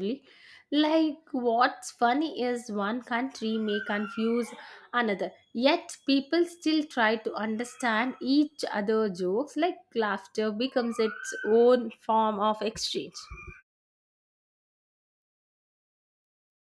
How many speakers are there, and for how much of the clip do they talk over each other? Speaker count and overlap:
1, no overlap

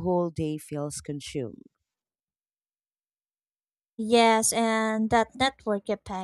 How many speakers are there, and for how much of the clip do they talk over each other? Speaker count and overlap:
2, no overlap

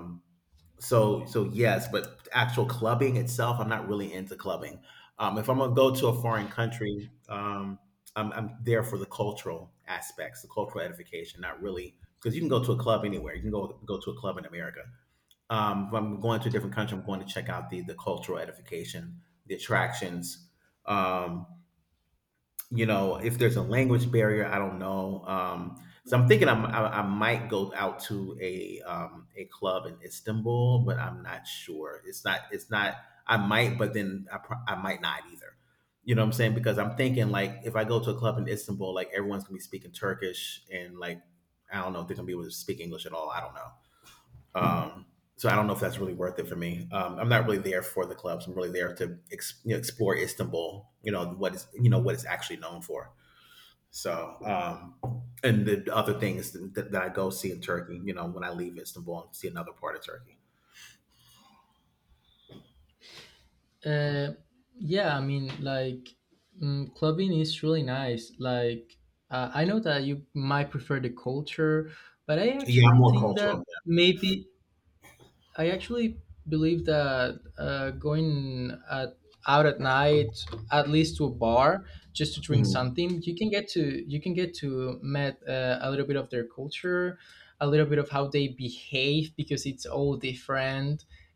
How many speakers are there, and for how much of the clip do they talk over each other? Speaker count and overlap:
2, about 1%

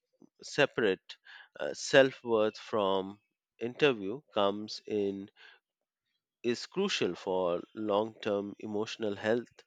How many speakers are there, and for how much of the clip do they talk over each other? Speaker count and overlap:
1, no overlap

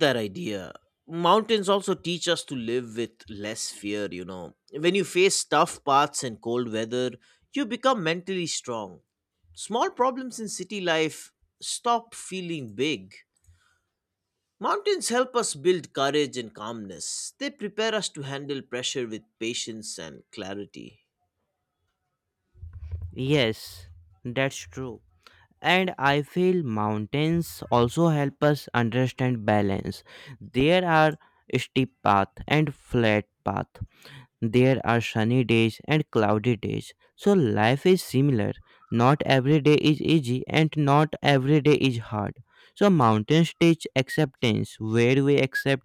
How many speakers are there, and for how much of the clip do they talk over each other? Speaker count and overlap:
2, no overlap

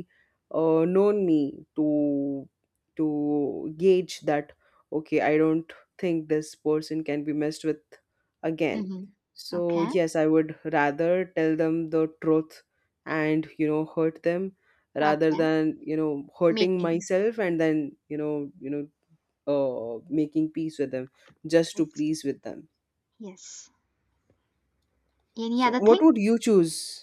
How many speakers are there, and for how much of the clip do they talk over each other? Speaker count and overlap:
2, about 7%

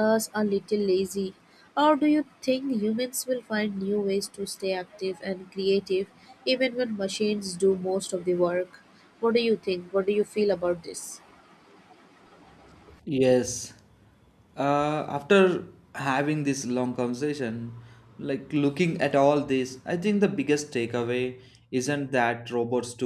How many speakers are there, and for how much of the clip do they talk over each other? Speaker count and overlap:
2, no overlap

